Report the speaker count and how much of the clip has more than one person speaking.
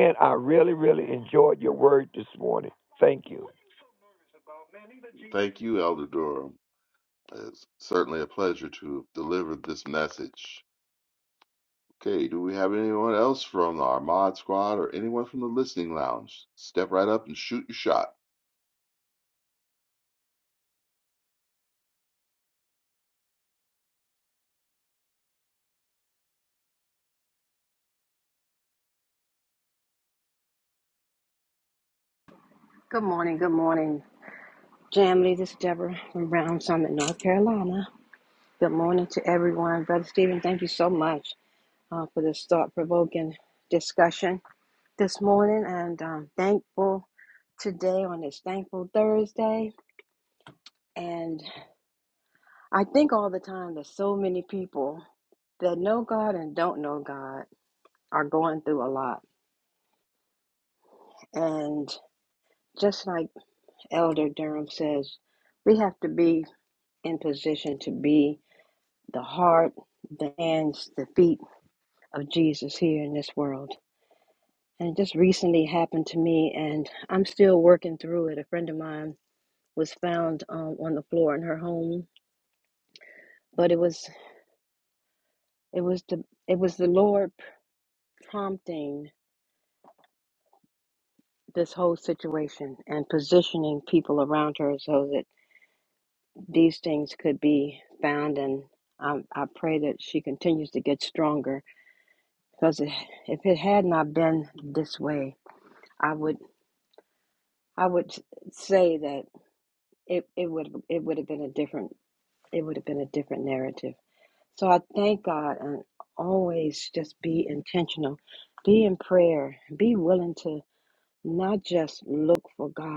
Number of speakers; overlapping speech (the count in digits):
3, no overlap